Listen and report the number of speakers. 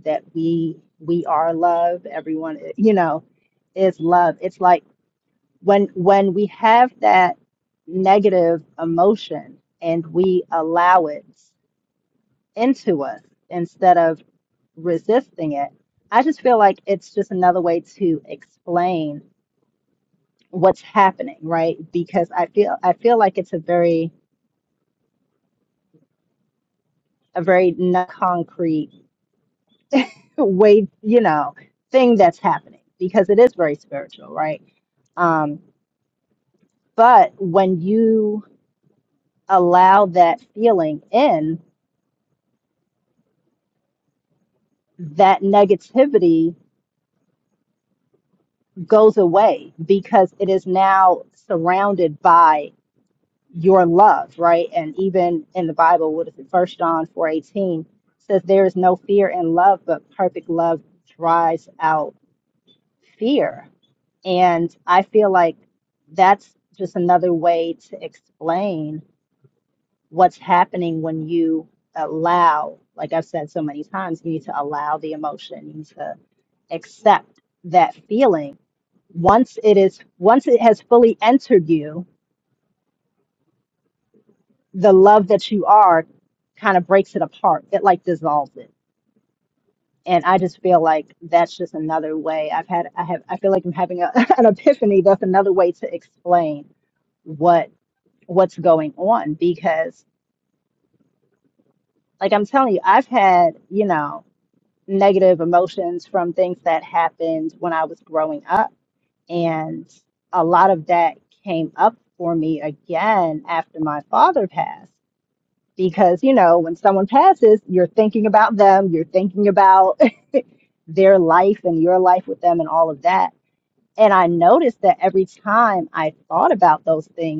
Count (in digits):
1